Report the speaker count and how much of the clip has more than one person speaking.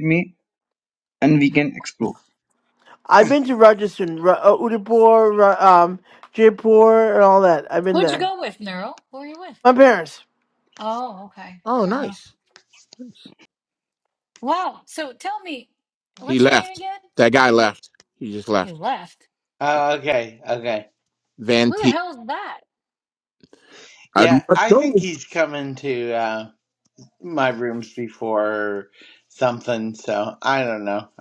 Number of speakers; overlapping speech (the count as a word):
five, about 8%